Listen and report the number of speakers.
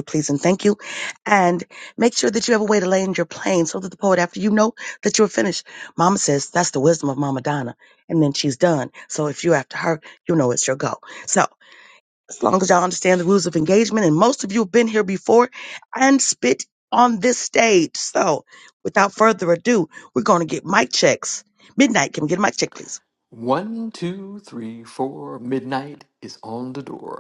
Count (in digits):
2